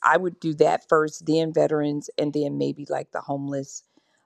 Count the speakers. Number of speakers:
1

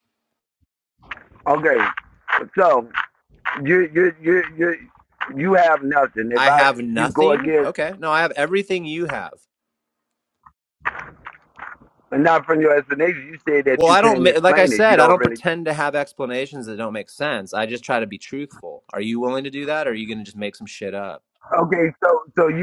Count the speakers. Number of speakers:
2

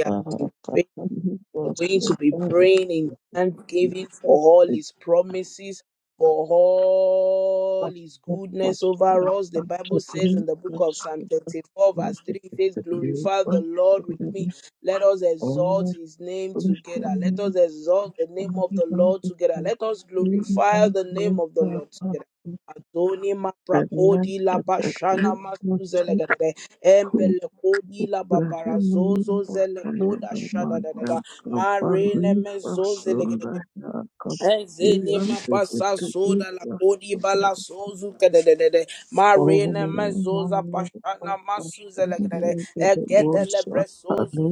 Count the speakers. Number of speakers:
2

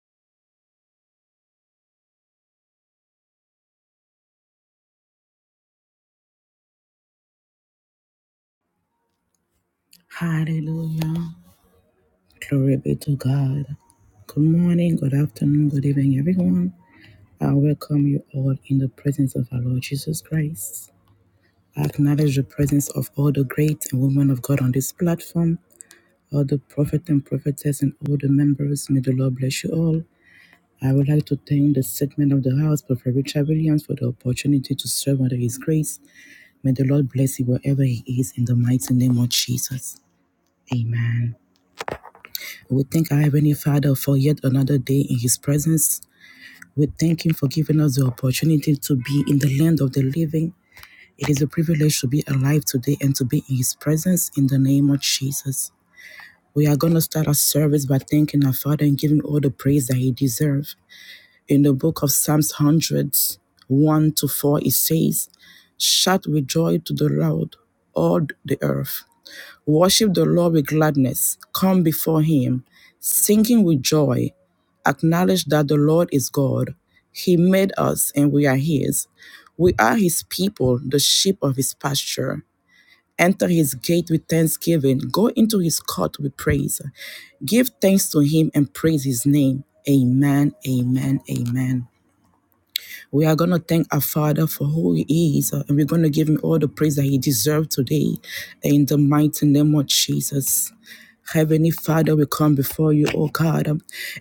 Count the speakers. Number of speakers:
1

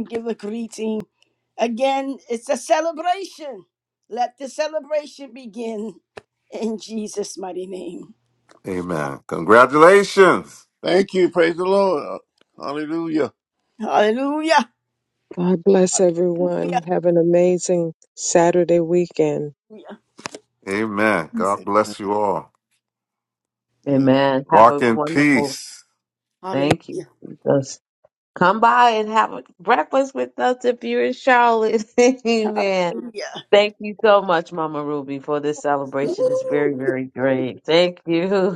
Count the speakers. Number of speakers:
5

